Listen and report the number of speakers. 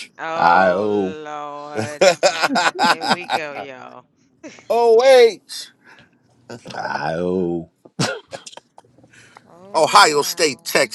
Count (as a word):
three